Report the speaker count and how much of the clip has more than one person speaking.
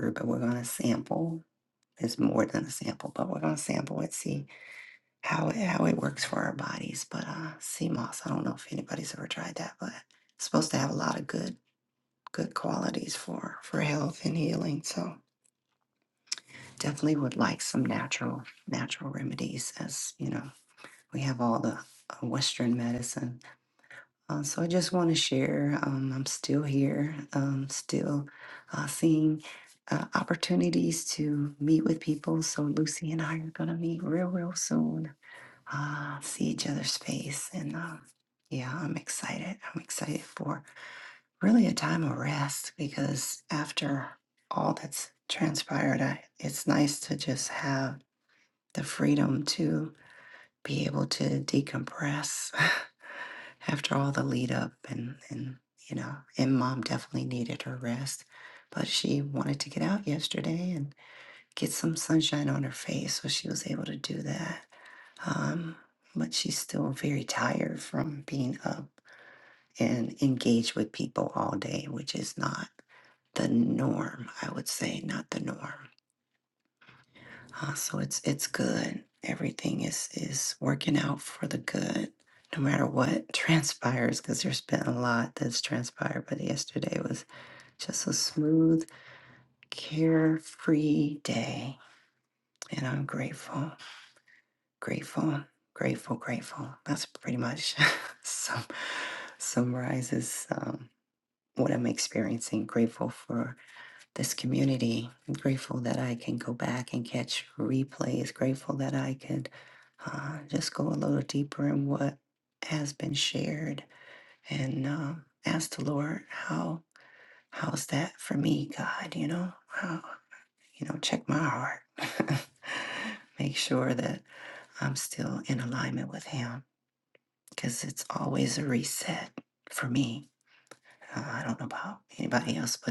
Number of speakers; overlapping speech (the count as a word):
one, no overlap